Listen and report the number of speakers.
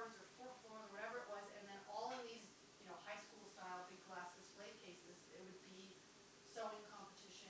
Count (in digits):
1